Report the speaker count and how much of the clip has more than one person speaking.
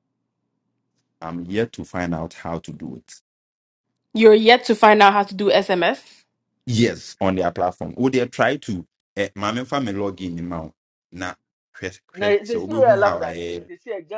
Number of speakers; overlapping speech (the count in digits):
3, about 8%